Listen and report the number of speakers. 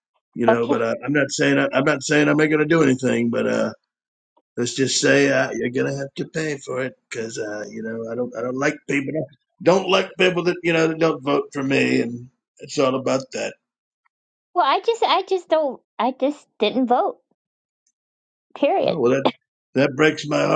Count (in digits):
2